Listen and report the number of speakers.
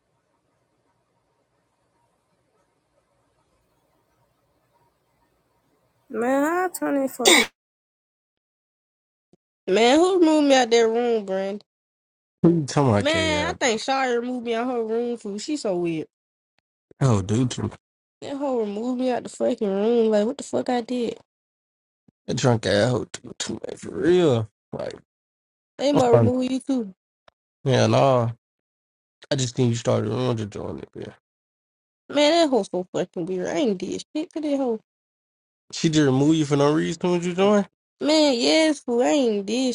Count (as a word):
two